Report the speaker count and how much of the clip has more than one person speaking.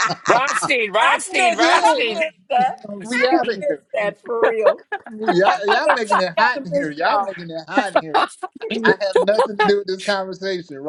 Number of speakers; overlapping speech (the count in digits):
3, about 35%